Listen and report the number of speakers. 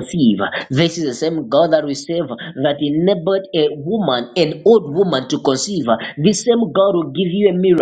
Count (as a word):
one